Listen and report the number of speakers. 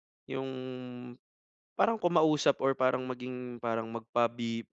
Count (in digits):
1